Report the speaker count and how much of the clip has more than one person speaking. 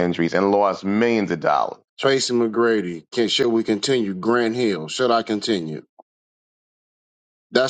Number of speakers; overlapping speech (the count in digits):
2, no overlap